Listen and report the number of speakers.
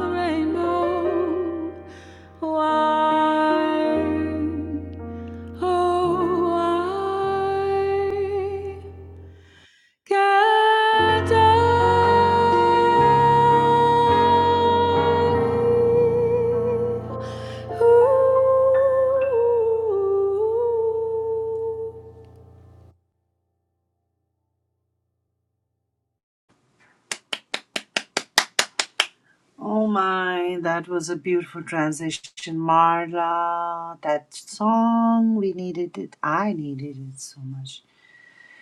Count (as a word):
two